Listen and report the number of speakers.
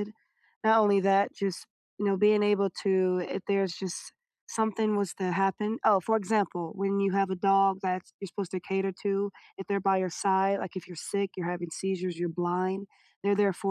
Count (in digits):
1